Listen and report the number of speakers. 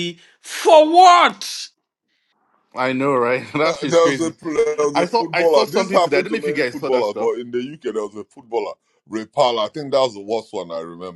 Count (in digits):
3